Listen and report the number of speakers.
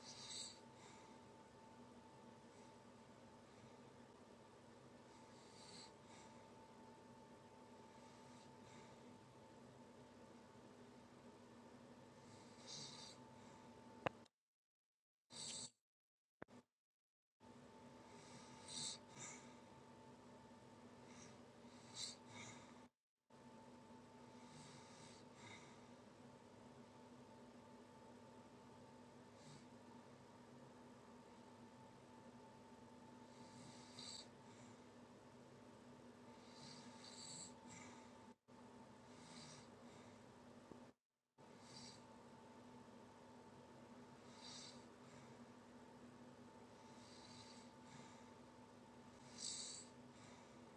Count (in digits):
0